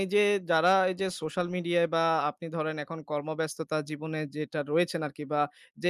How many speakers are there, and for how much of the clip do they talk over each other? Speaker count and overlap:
one, no overlap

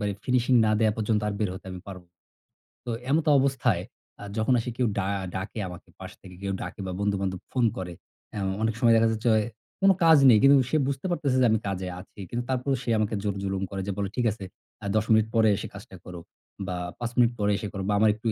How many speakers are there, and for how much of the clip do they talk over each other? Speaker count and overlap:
one, no overlap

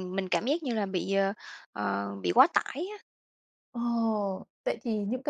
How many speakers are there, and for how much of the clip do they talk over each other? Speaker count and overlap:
two, no overlap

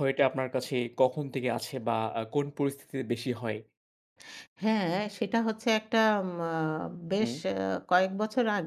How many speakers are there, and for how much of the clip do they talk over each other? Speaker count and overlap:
two, about 2%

